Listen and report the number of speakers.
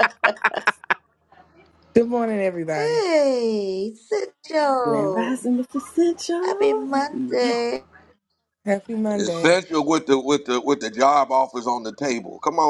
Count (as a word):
four